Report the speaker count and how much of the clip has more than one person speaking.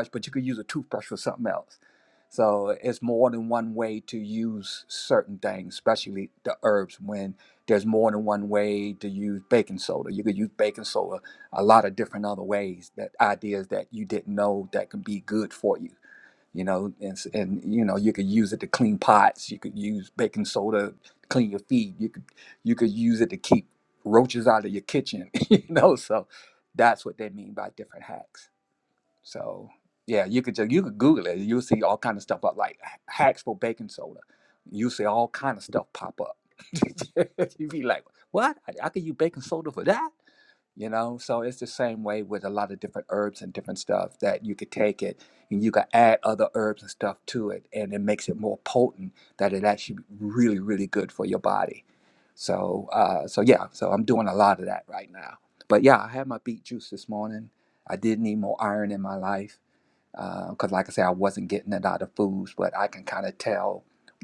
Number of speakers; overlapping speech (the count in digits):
1, no overlap